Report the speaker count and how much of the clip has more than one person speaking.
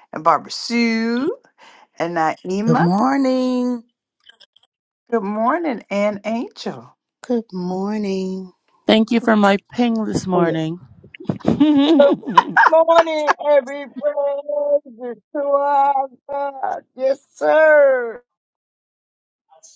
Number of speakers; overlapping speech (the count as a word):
five, about 3%